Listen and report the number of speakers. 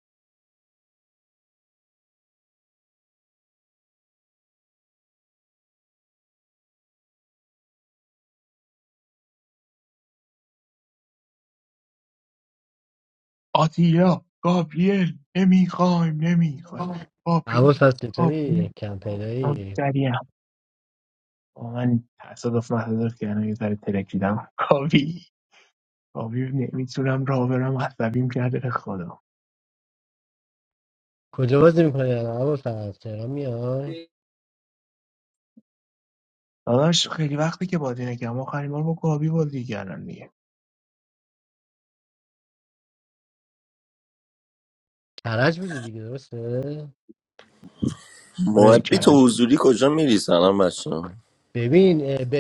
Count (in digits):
3